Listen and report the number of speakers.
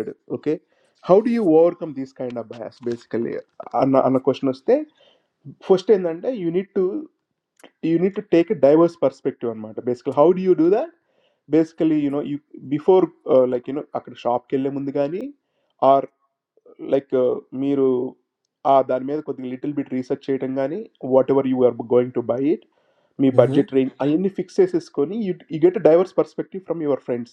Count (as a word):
one